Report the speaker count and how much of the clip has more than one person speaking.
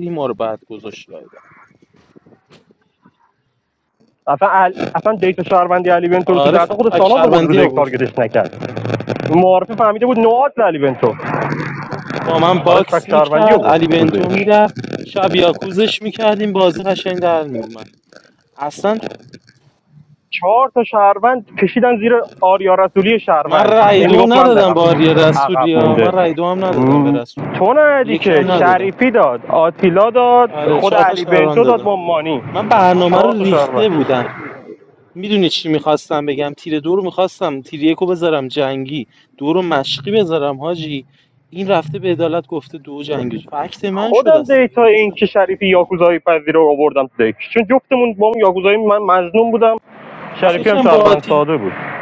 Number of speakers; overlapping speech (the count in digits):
2, about 22%